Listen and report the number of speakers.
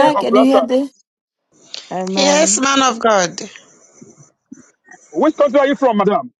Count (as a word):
three